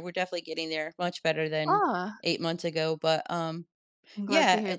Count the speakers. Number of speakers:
2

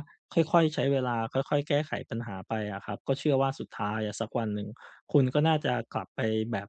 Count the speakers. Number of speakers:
1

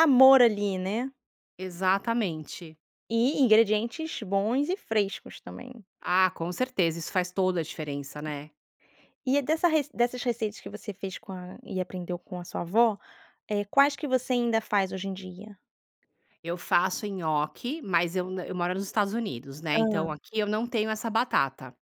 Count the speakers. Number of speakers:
2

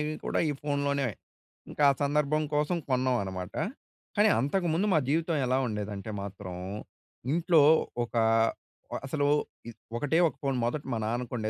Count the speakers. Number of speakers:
1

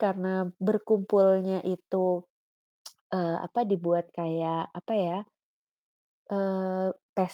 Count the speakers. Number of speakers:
1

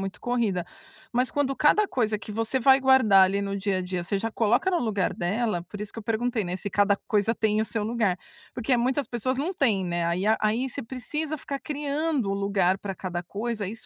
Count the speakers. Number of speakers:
1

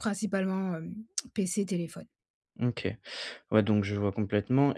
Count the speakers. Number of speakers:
2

